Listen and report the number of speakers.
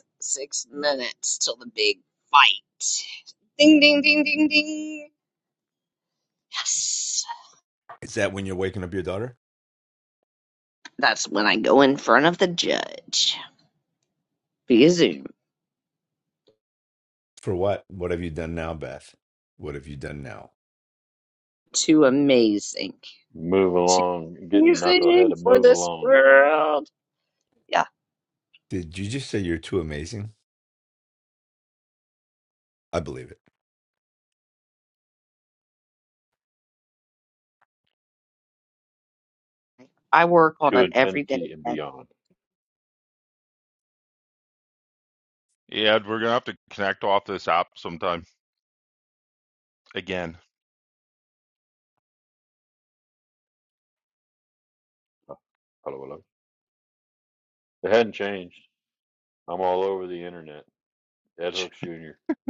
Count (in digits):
4